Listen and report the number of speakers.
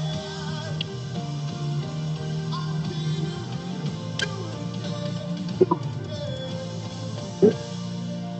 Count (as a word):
zero